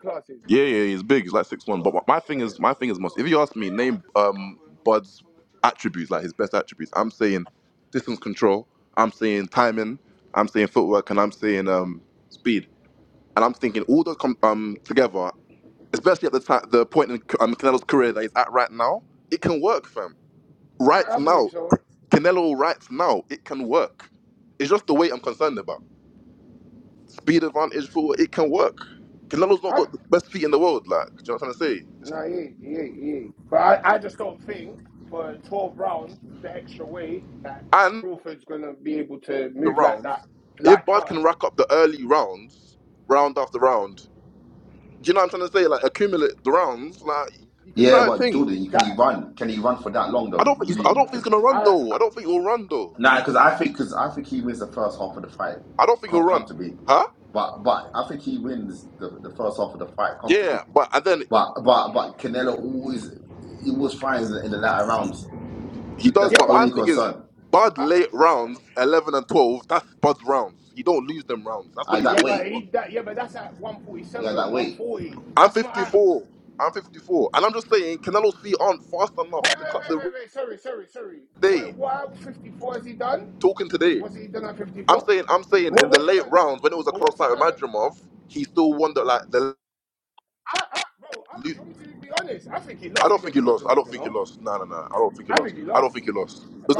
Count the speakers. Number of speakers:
three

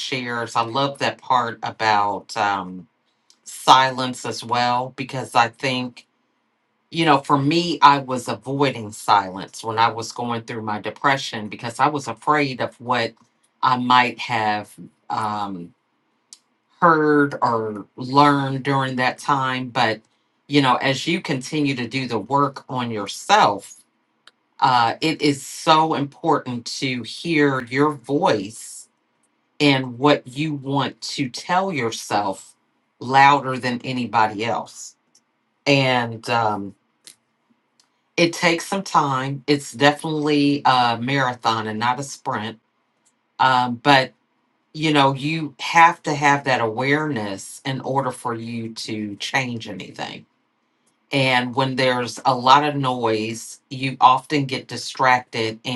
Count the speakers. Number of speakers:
one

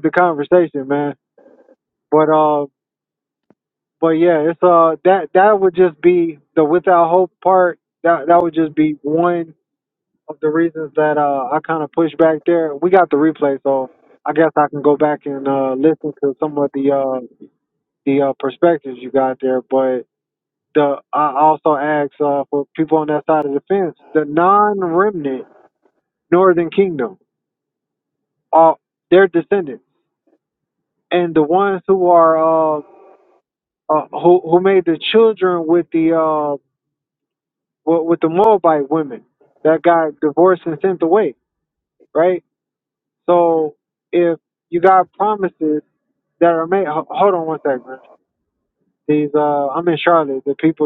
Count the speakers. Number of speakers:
one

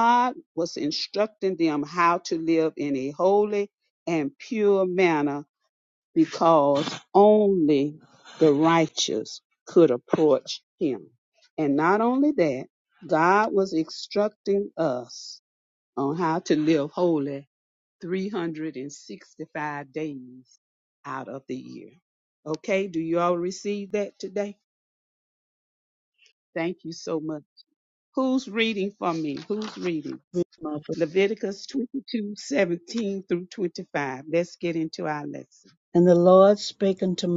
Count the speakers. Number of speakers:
two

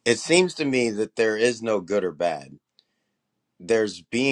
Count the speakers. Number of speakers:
one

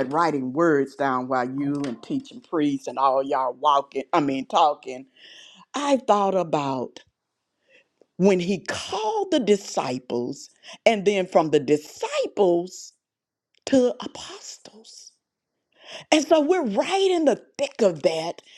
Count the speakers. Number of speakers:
one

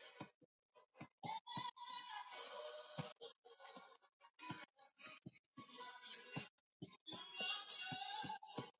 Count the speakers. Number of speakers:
zero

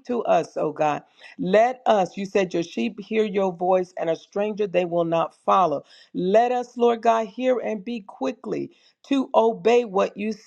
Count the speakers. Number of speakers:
one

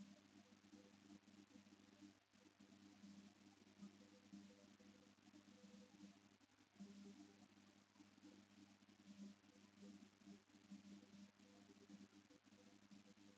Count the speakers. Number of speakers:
zero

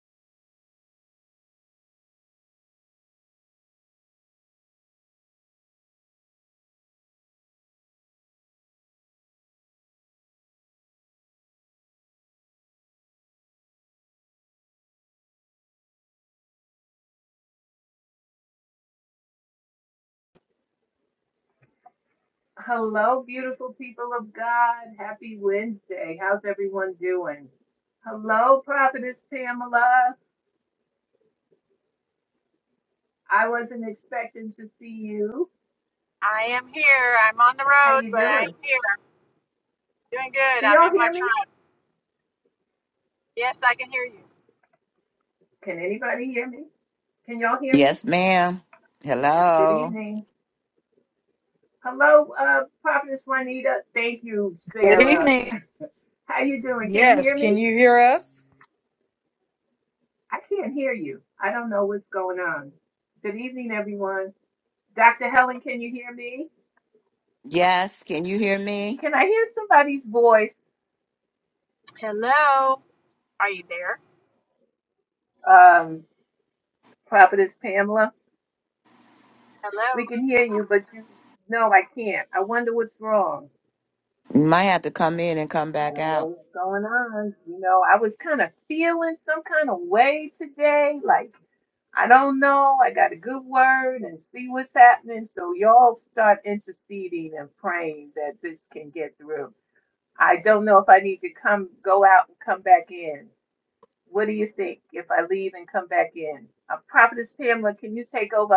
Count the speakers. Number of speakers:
four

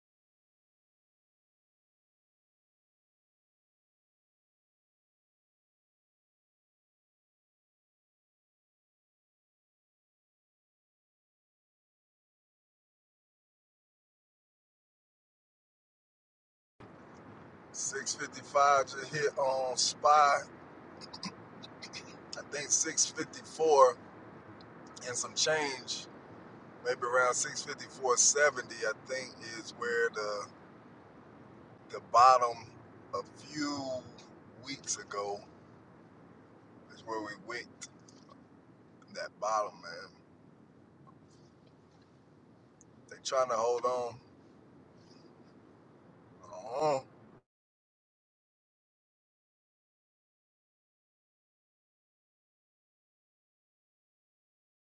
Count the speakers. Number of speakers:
one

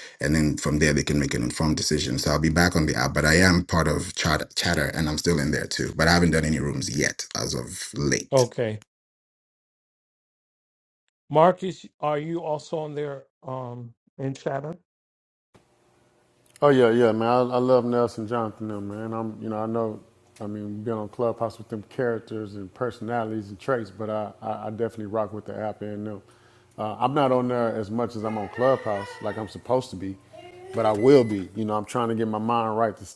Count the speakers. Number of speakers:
three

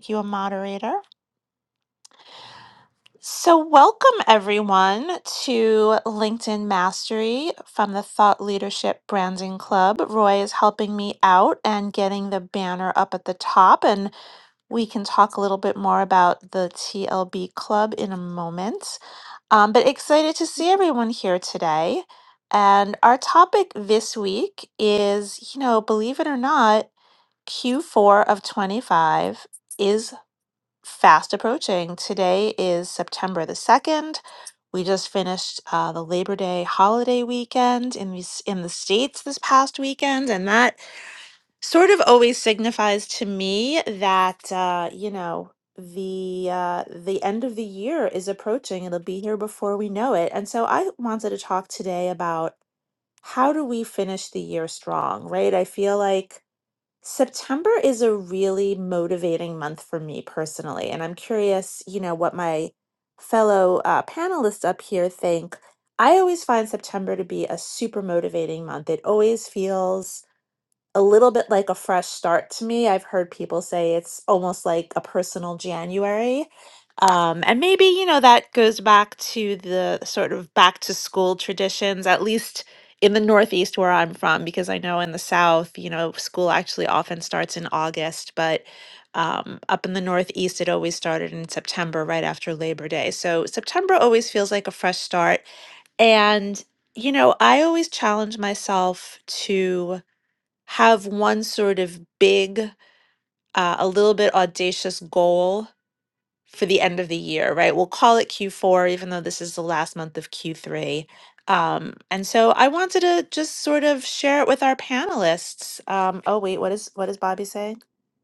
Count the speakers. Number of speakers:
one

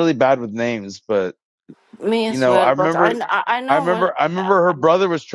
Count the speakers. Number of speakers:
two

